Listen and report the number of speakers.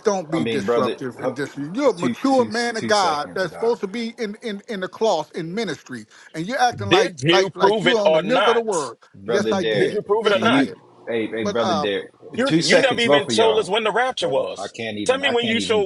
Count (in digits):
3